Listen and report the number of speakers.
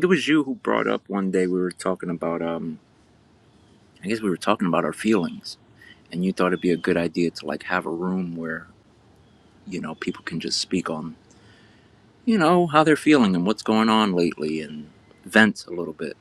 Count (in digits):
1